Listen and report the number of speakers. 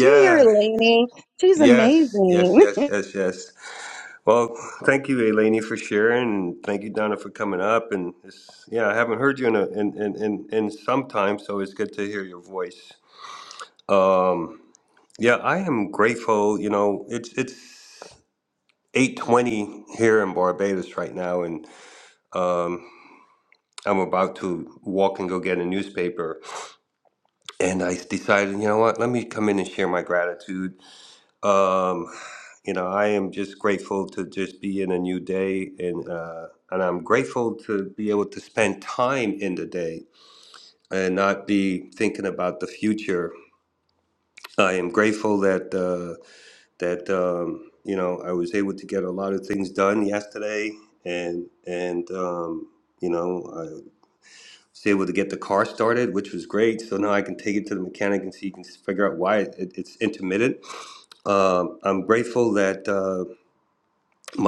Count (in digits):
2